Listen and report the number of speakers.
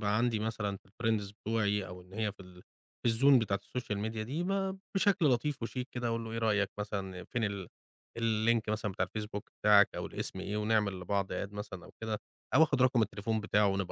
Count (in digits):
1